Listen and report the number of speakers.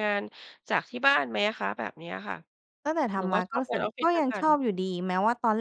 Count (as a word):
two